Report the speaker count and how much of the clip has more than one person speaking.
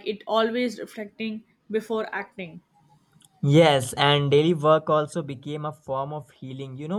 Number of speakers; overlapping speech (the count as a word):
two, no overlap